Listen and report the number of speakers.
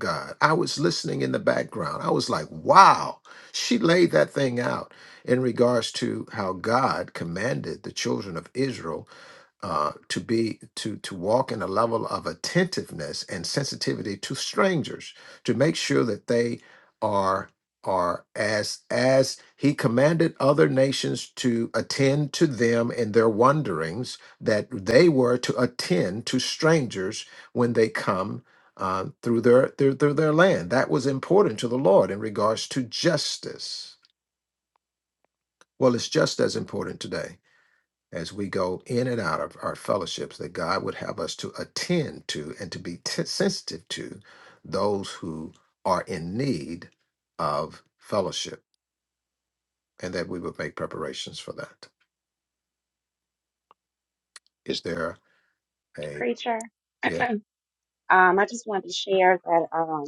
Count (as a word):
two